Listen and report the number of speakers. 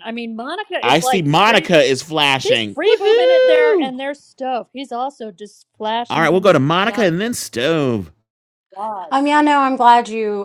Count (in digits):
3